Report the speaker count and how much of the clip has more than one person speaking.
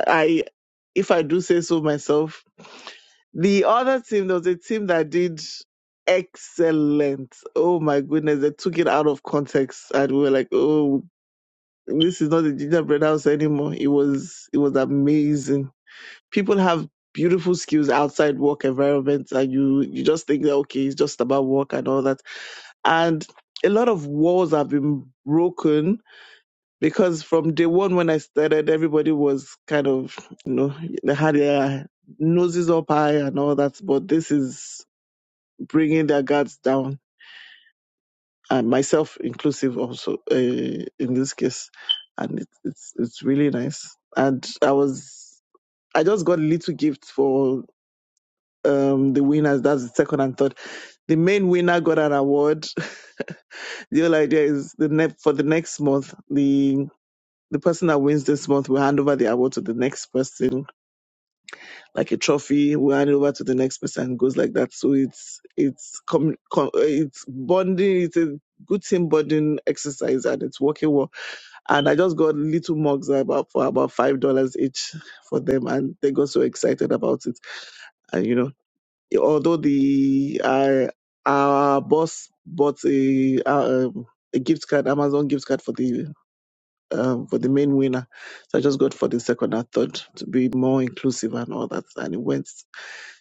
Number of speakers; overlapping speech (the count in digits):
1, no overlap